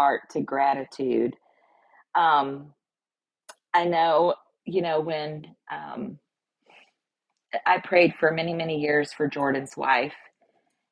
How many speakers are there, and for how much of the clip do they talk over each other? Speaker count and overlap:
one, no overlap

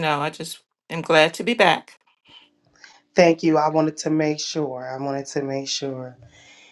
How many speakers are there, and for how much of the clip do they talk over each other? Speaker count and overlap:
two, no overlap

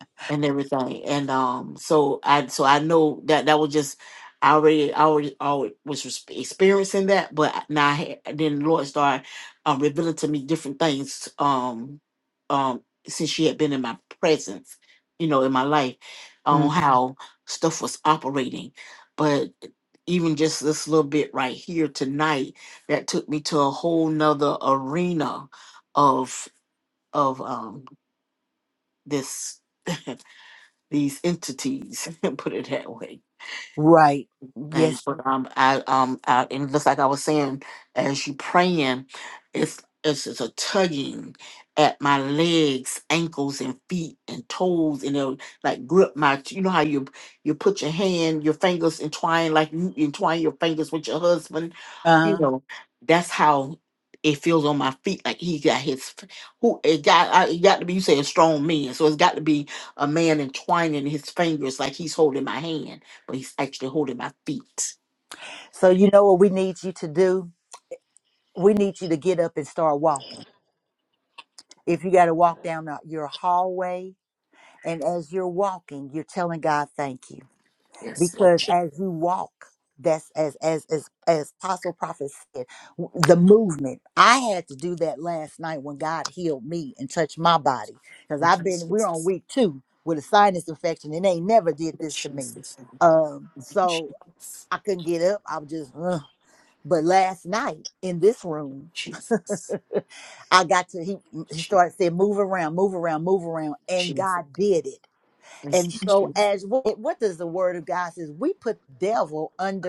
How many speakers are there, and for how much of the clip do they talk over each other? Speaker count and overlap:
two, about 2%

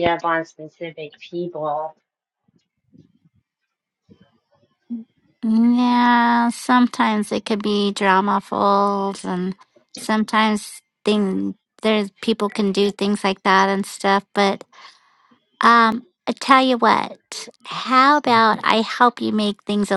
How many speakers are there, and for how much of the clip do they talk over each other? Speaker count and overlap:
two, no overlap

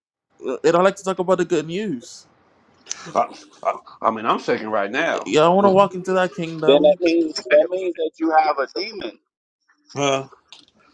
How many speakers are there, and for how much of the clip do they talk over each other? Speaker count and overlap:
three, about 7%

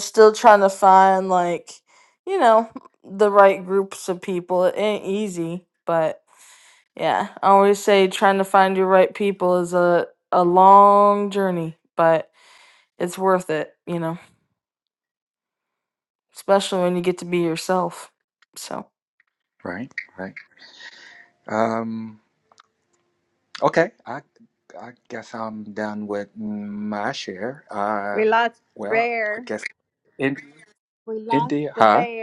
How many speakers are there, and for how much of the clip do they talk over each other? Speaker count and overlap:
three, about 5%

